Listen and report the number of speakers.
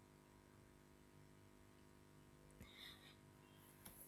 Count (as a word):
zero